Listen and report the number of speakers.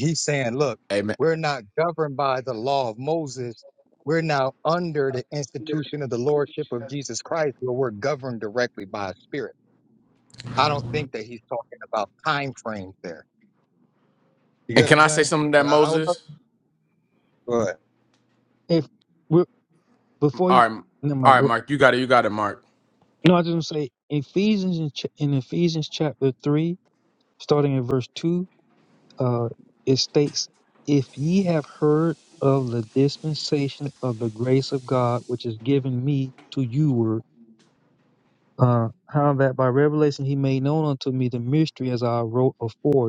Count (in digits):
3